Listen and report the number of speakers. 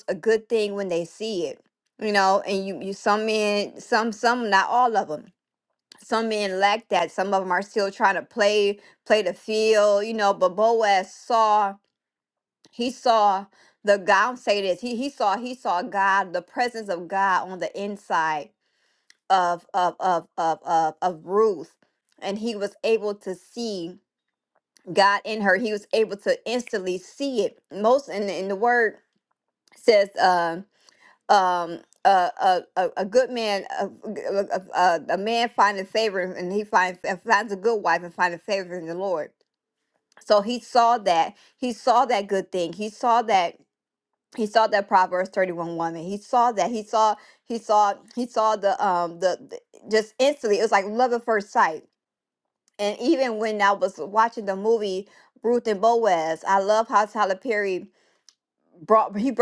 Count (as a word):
one